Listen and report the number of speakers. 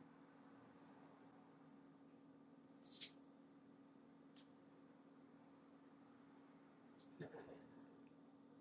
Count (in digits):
0